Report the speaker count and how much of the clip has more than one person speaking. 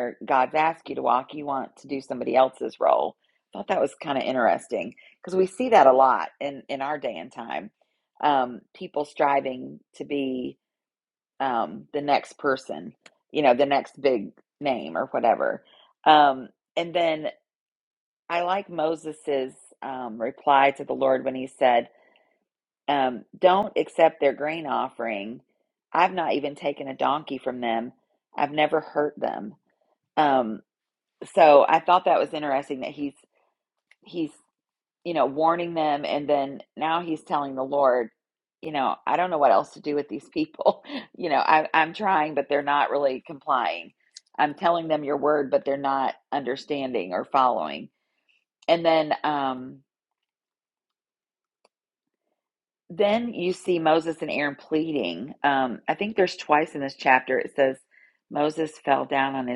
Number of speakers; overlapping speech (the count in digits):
1, no overlap